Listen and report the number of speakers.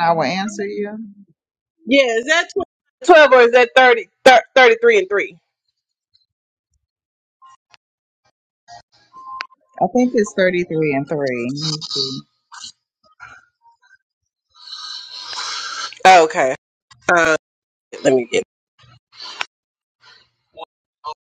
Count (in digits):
2